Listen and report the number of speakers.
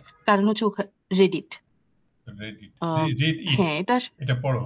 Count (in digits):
2